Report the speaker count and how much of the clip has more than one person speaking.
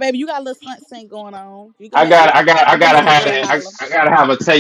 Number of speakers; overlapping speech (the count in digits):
2, about 31%